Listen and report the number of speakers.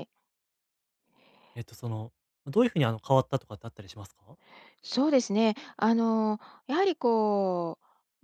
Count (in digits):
2